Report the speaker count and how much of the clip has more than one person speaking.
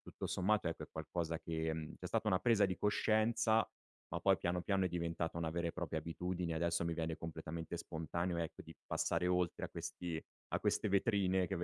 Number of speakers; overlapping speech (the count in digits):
1, no overlap